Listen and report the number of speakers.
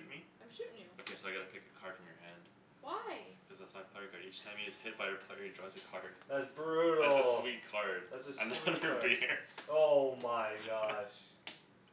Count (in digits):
3